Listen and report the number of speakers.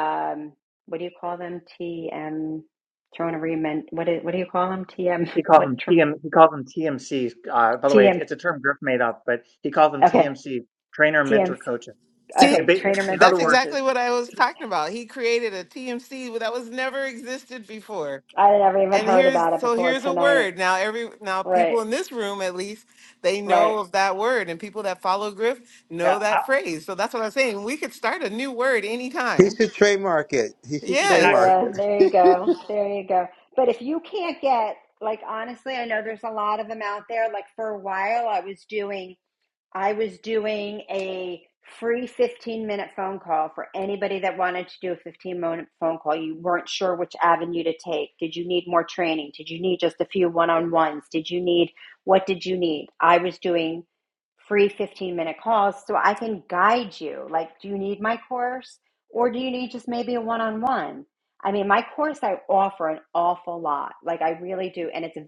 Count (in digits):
4